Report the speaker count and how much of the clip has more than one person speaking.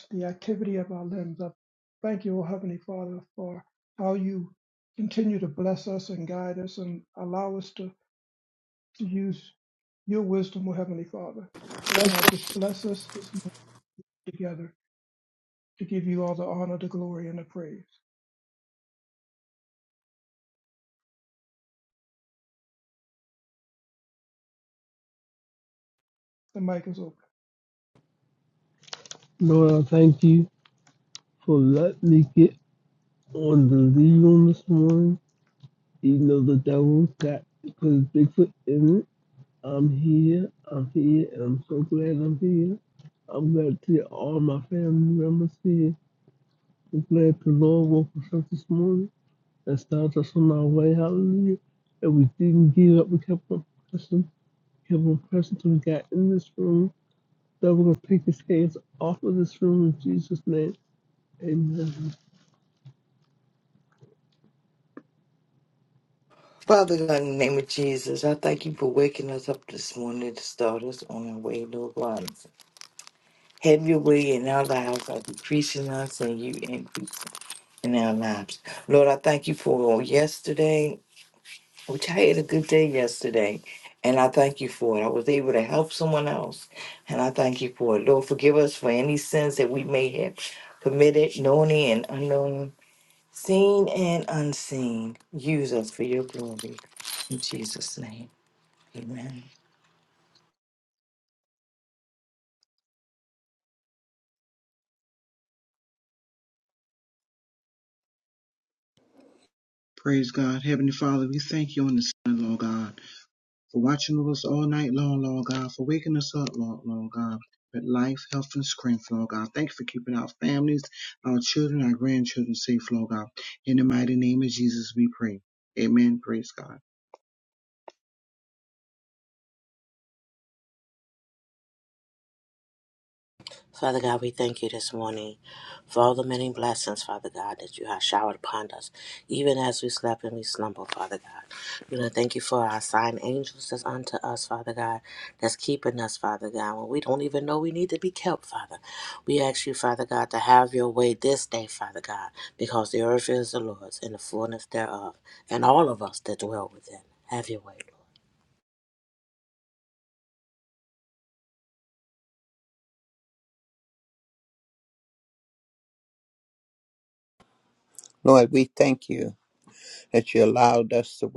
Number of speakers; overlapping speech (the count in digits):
6, no overlap